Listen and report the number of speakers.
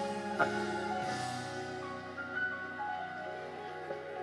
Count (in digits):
0